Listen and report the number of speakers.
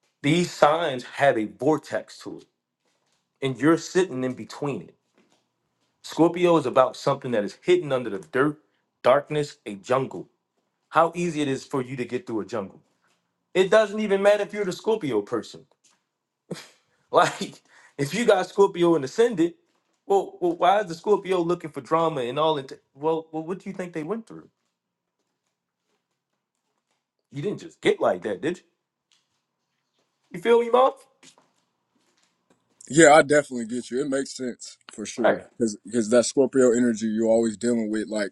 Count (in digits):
2